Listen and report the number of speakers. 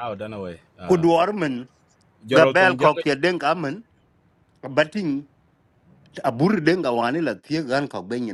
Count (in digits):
2